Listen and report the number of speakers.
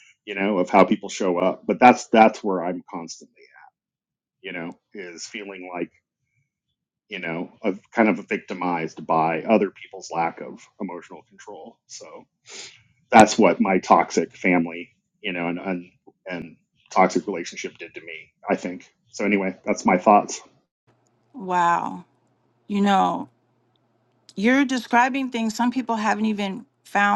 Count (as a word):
two